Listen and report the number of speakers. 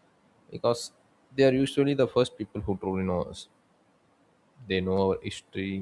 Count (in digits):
1